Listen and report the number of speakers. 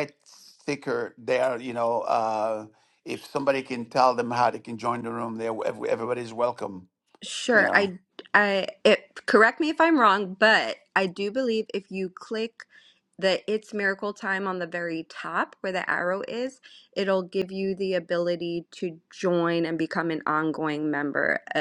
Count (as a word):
two